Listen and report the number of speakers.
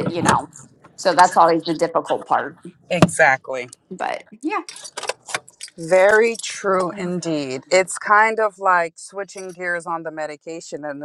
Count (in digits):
2